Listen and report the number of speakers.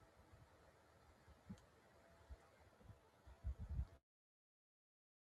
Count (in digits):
0